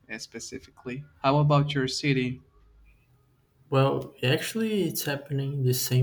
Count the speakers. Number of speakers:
two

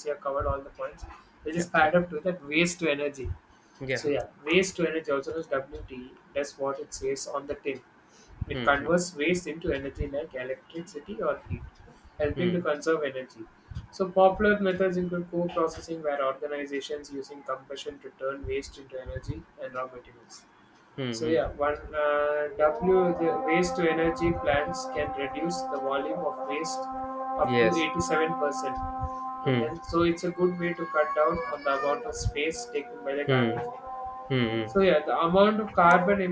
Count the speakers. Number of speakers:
two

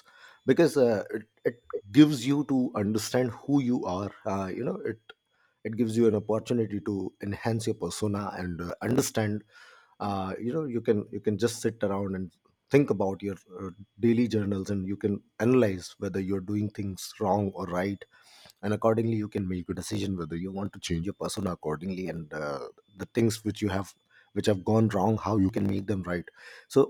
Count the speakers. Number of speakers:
one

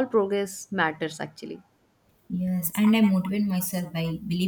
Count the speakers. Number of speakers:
two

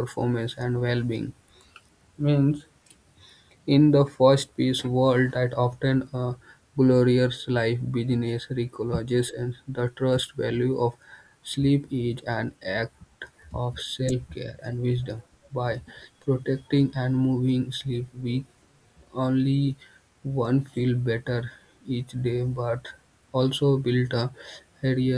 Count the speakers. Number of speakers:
one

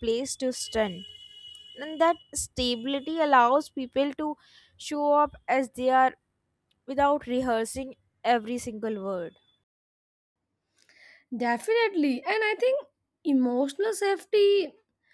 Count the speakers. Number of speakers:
two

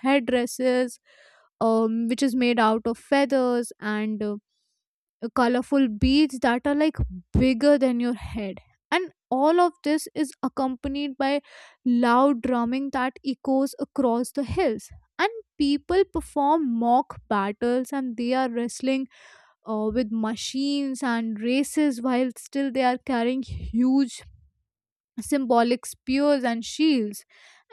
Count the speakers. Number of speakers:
one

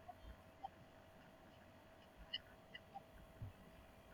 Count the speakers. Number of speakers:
zero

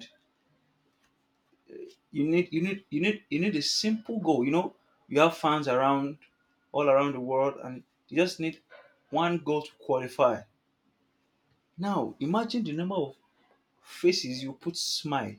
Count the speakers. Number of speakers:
one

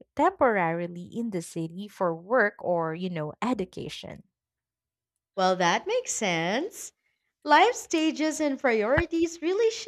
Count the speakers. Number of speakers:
two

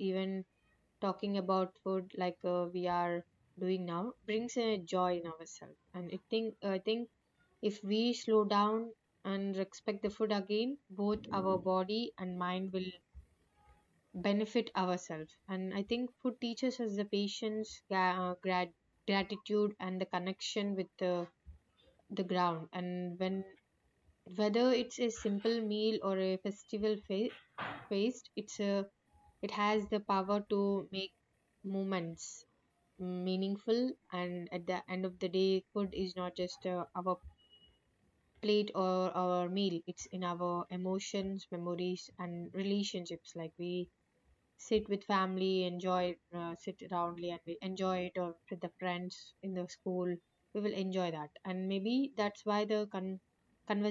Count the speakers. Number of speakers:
one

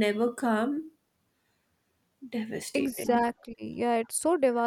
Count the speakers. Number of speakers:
two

